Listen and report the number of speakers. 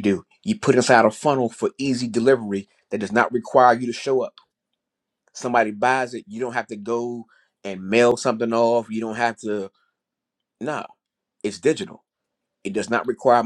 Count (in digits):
1